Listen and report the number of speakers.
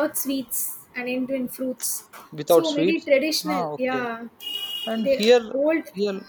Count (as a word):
two